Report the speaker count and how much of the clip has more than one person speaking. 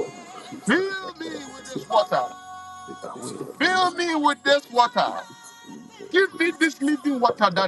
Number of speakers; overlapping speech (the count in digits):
2, about 17%